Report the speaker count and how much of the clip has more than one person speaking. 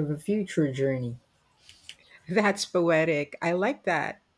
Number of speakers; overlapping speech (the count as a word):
two, no overlap